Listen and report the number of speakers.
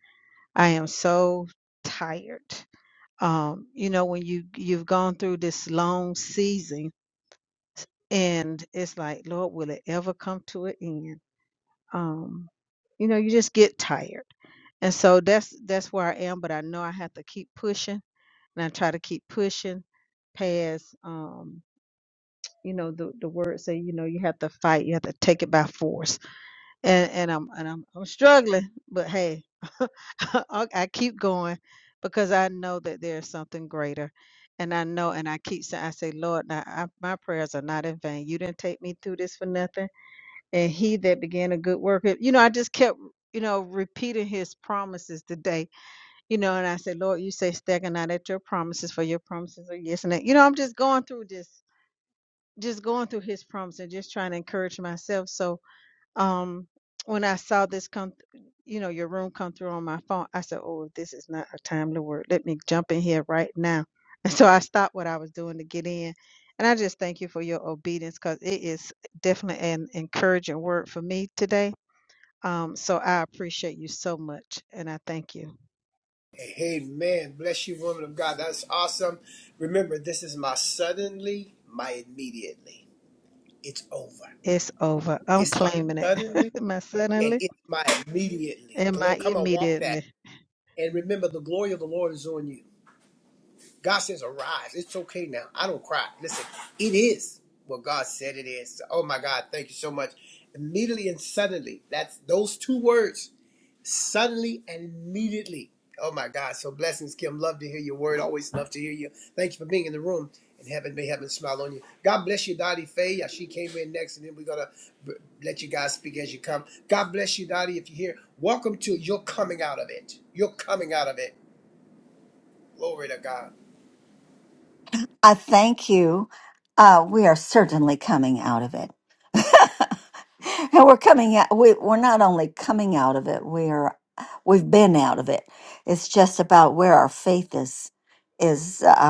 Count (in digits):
3